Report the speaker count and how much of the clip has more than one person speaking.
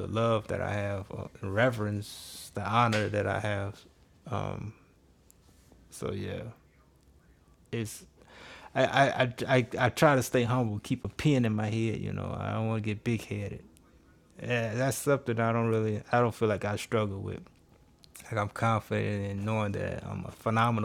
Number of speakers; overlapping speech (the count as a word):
one, no overlap